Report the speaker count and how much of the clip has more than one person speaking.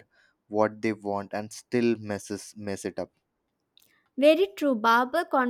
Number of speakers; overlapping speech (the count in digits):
2, no overlap